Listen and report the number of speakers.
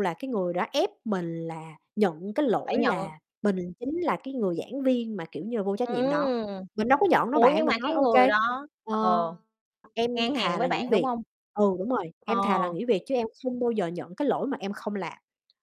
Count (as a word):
two